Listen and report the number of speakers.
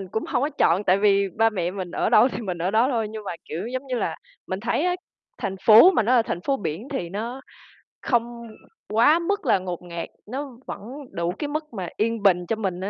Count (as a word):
one